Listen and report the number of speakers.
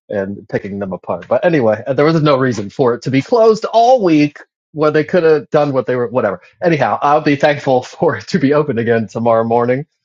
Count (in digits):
1